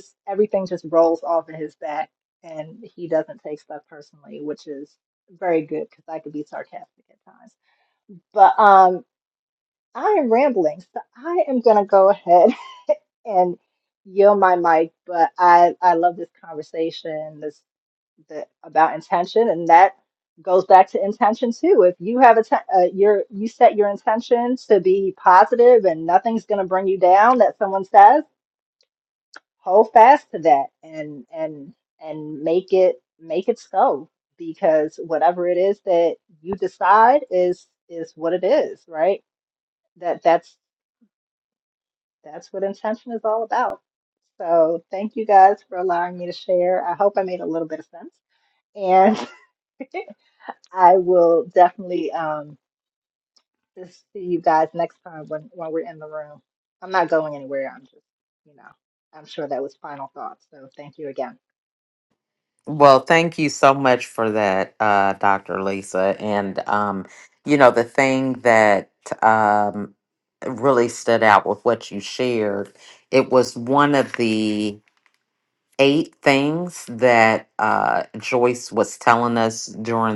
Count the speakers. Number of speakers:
two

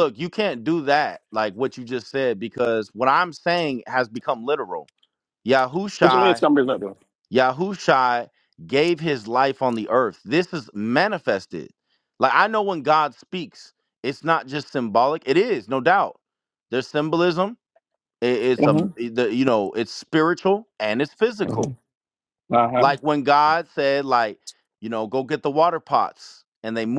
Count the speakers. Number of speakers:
two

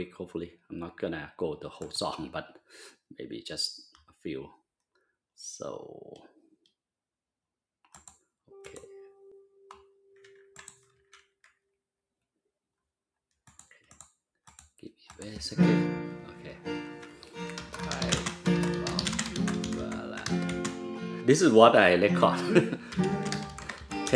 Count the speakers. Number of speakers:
one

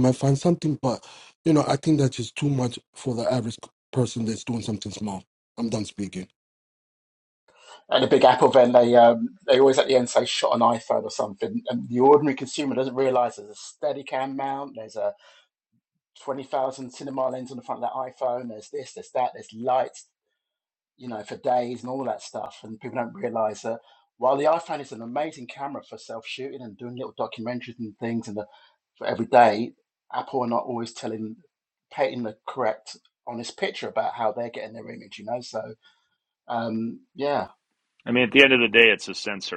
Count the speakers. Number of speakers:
three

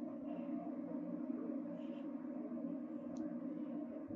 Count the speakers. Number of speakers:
zero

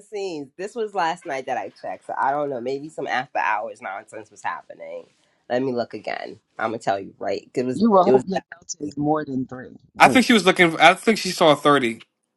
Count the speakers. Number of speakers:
three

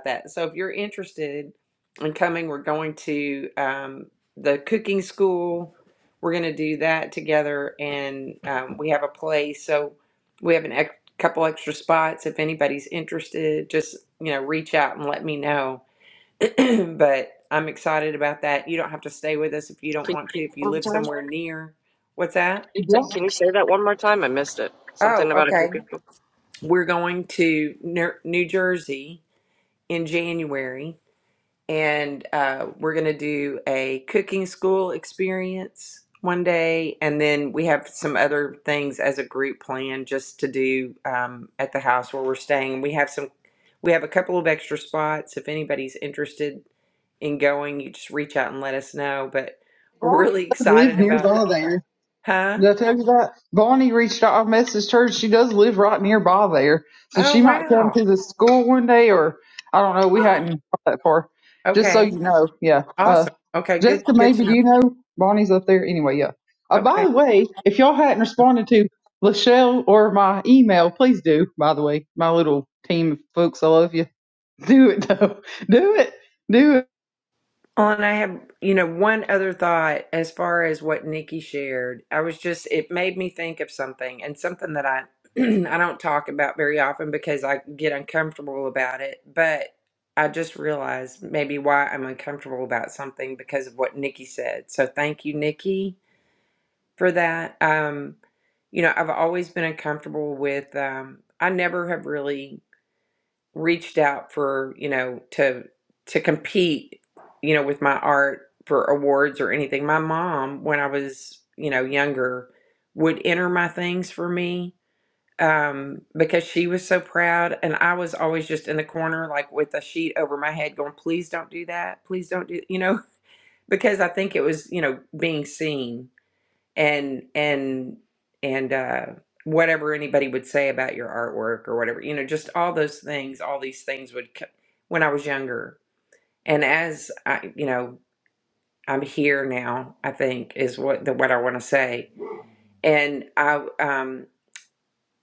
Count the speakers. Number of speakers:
three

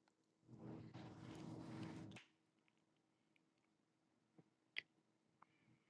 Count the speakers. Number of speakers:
zero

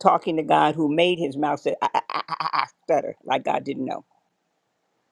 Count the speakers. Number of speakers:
one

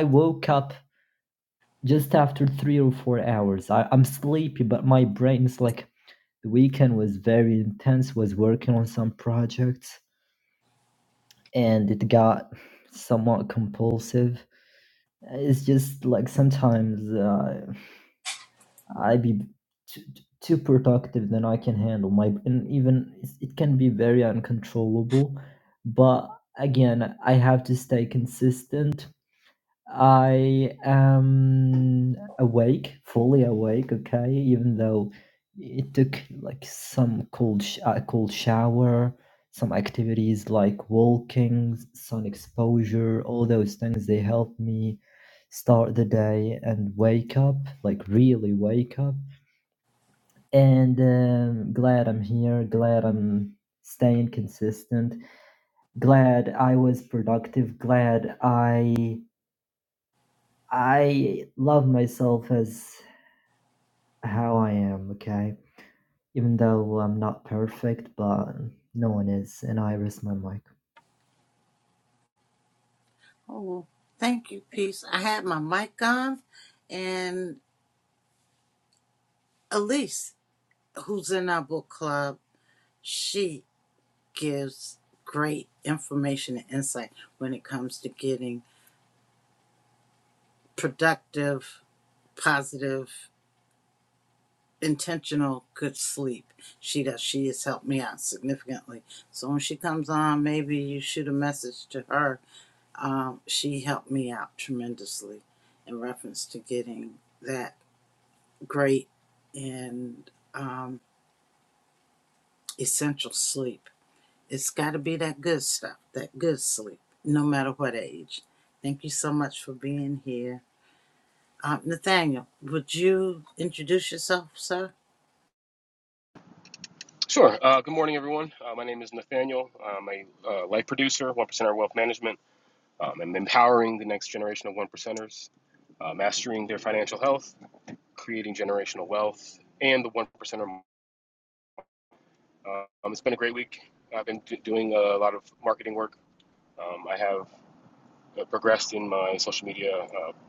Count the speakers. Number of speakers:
three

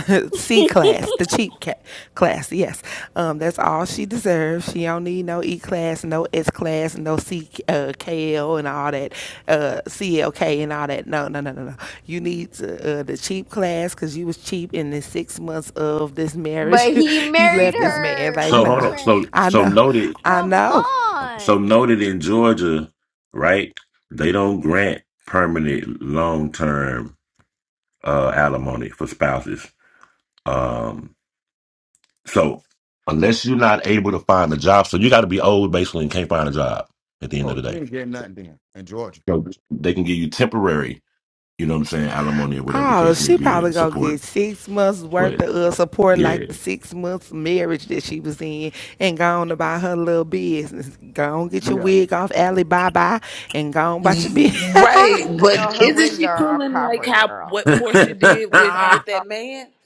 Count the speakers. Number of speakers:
five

